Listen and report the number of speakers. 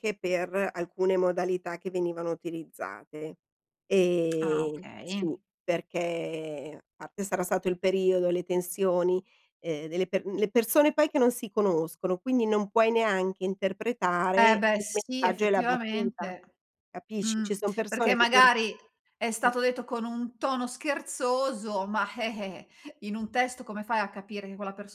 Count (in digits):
2